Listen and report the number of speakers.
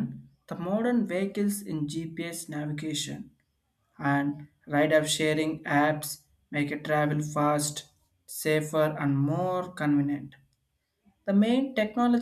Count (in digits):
1